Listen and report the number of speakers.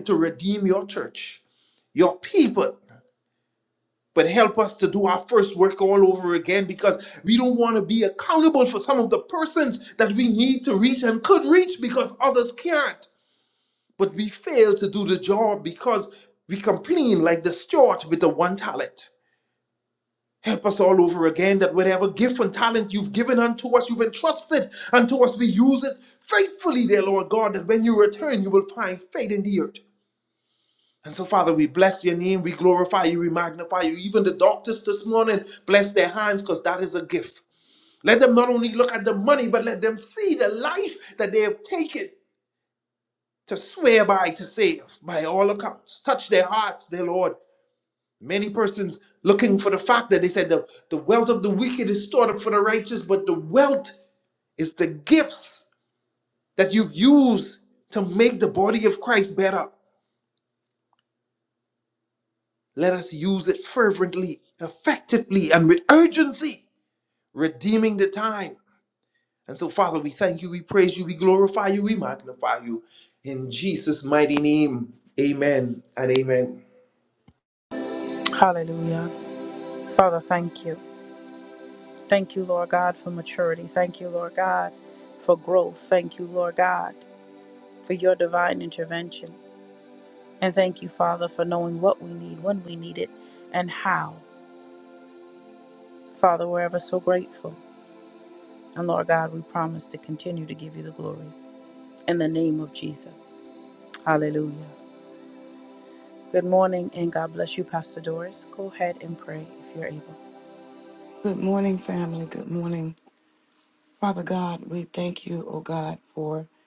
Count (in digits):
3